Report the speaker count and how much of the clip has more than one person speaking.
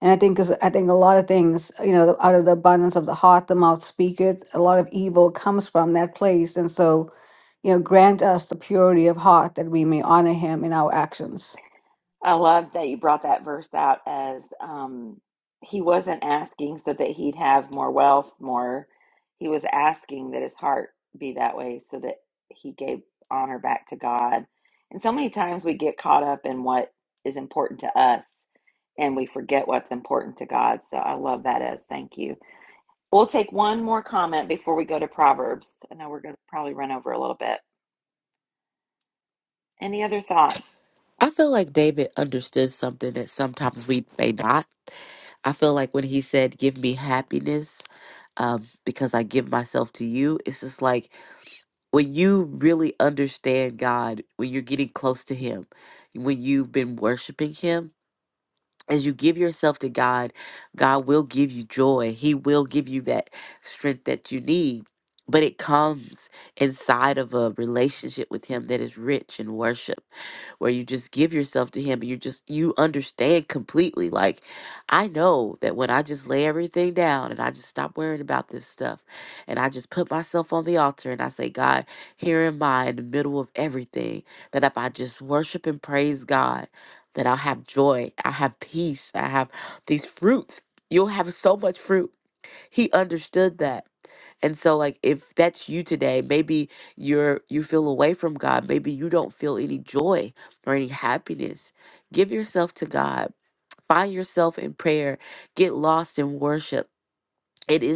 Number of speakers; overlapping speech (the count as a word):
three, no overlap